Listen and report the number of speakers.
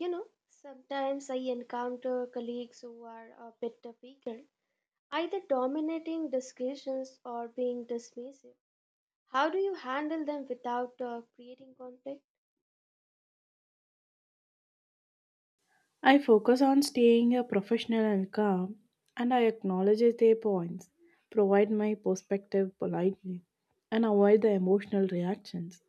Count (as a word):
two